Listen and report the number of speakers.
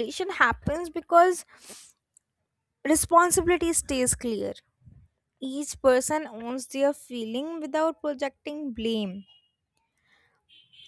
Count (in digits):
1